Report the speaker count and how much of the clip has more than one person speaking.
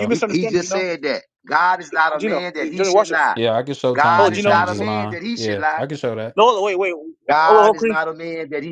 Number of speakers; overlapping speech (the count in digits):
3, about 52%